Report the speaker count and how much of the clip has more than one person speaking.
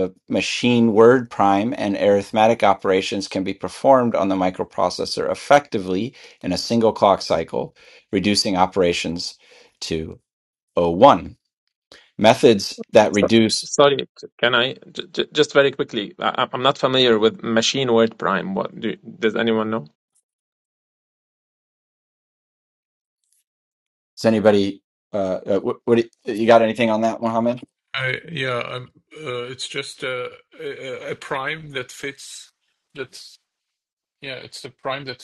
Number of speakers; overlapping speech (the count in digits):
3, under 1%